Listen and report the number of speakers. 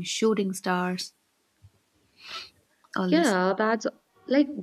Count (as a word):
two